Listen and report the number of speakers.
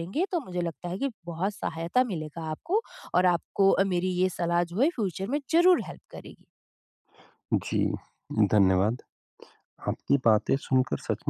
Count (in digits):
2